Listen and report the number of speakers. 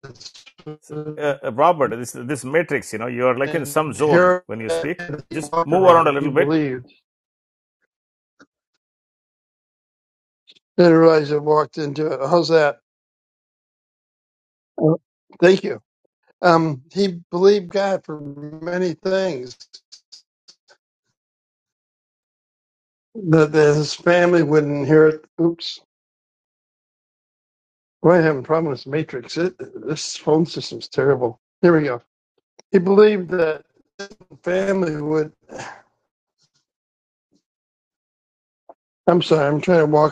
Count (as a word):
two